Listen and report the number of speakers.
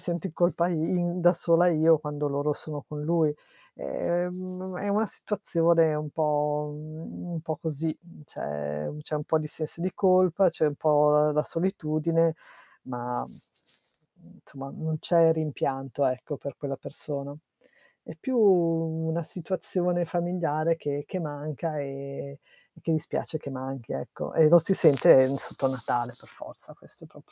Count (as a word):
one